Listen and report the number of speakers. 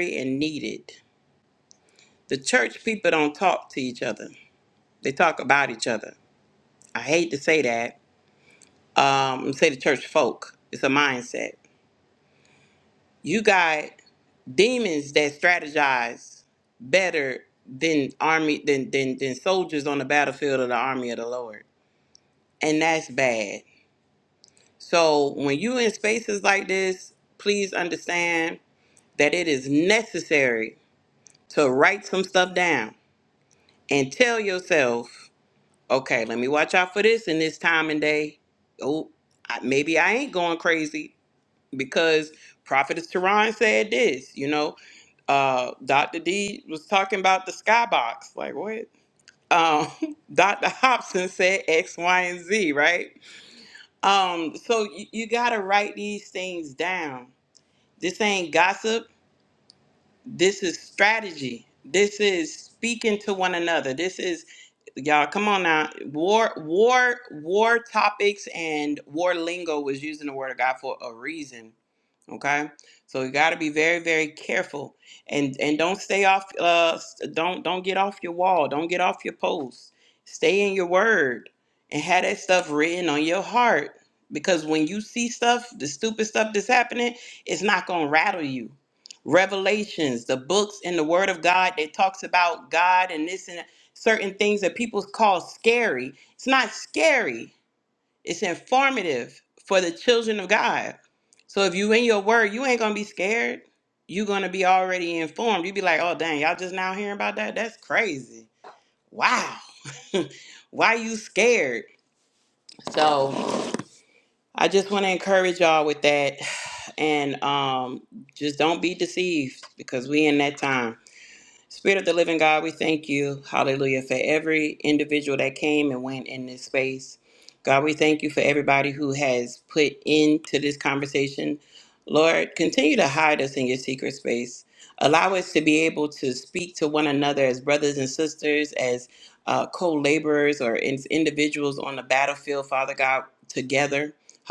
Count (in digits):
1